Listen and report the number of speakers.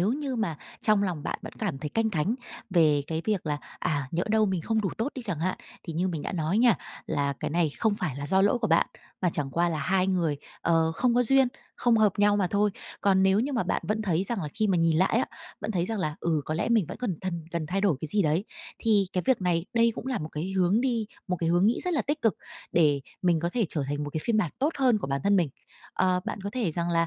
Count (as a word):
one